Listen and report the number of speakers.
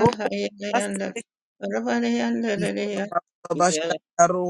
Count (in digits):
2